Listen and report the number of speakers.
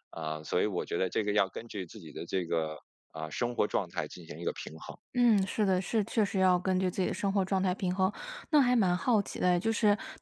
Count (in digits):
2